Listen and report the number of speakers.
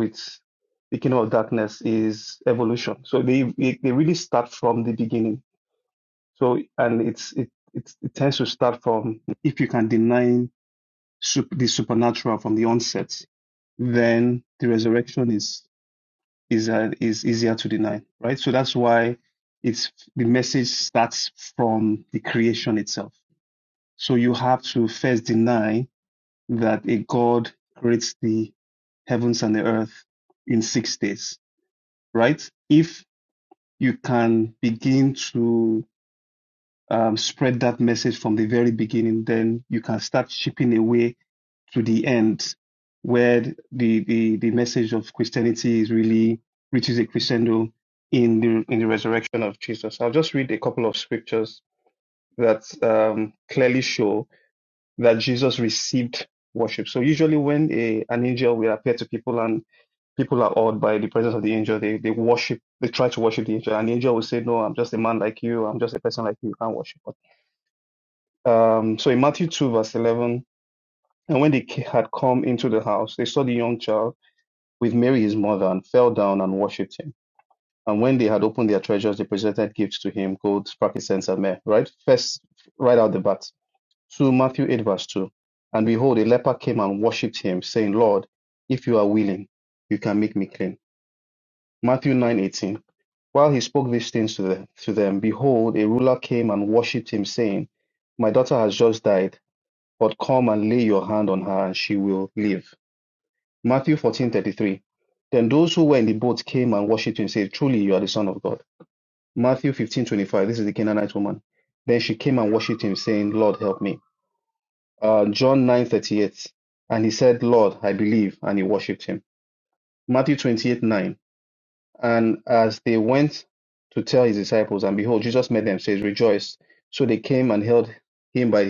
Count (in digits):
1